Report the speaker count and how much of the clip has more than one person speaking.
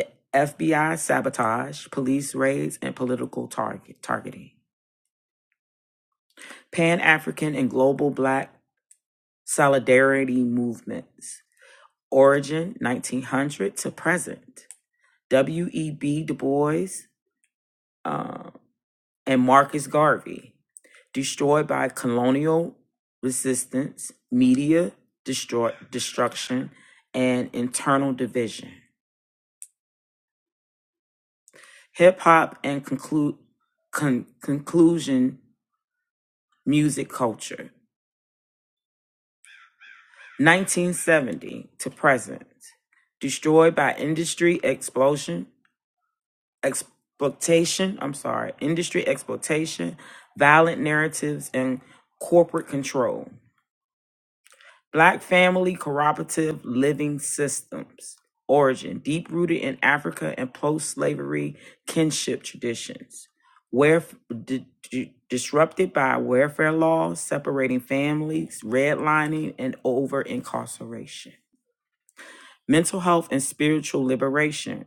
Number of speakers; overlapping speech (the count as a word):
one, no overlap